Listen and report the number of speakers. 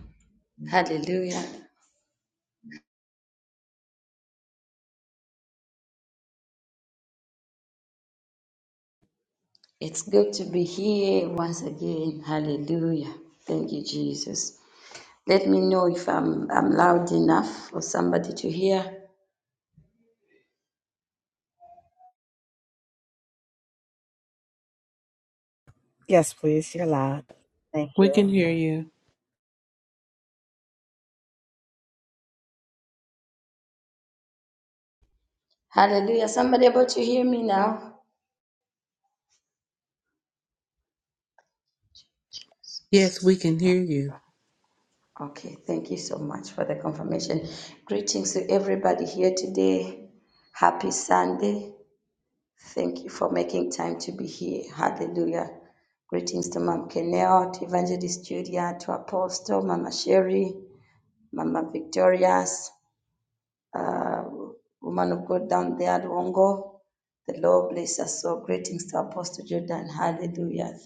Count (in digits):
3